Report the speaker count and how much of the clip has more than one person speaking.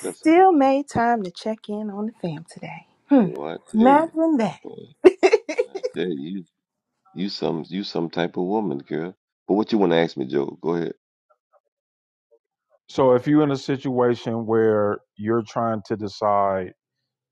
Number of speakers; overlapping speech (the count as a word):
three, about 5%